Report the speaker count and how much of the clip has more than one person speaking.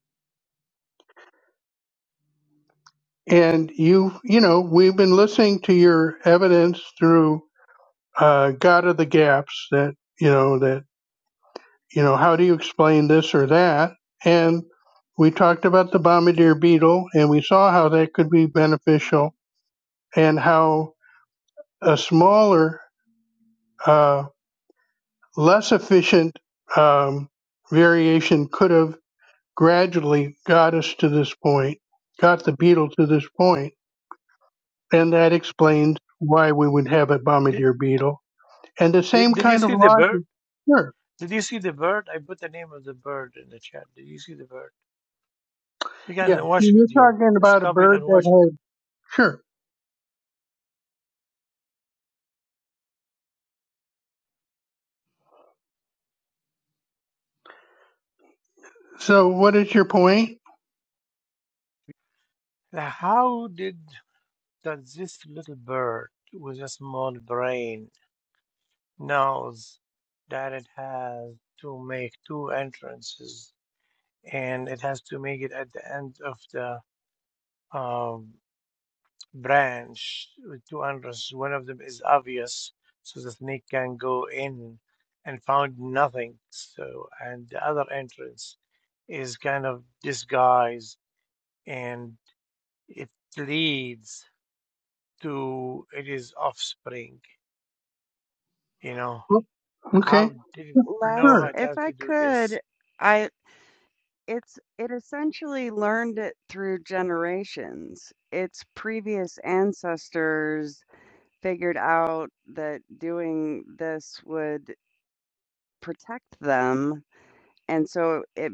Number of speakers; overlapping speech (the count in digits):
3, about 4%